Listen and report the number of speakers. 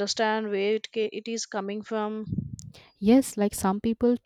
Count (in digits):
2